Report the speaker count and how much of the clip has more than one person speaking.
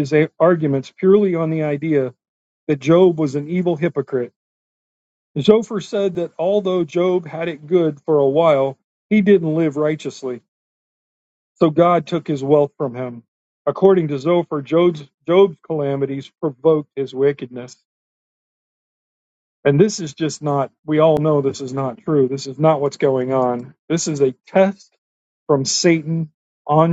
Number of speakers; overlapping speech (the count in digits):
1, no overlap